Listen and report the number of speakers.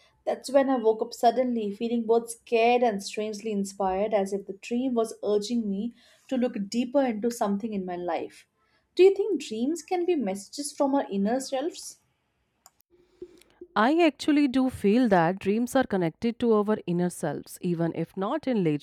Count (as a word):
two